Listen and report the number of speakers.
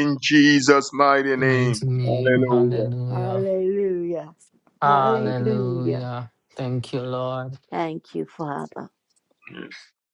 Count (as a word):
three